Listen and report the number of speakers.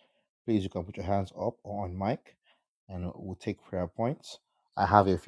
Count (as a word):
one